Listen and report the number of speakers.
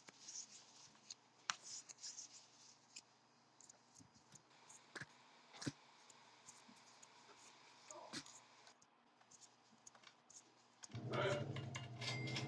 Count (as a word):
zero